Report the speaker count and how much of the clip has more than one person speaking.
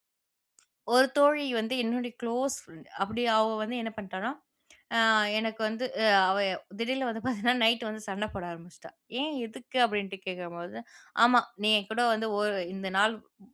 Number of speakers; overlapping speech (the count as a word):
one, no overlap